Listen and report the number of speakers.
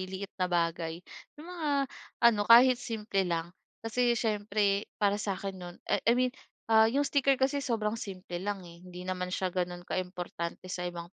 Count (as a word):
one